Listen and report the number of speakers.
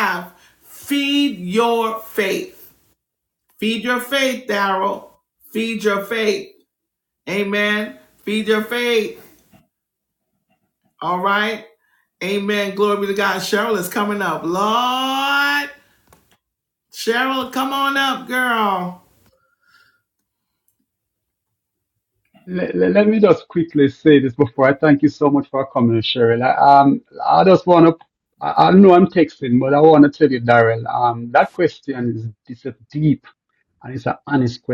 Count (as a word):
two